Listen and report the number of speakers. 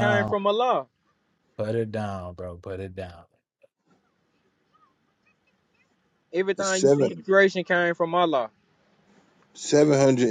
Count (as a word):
three